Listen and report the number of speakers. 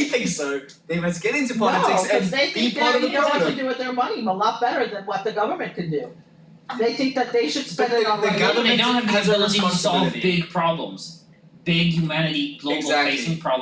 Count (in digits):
3